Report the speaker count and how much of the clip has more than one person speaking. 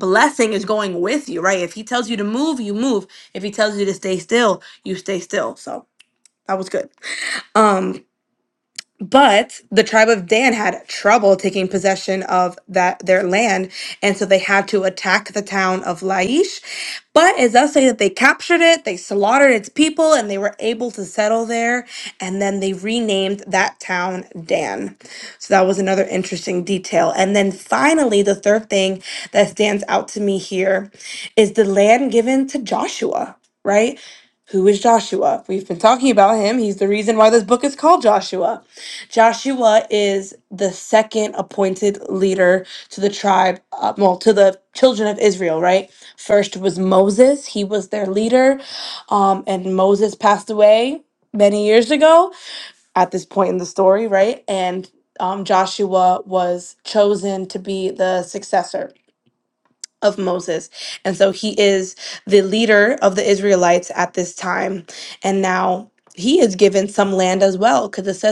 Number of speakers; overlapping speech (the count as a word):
one, no overlap